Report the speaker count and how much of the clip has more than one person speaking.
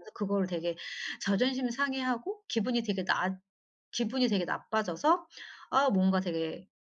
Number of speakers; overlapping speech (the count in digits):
1, no overlap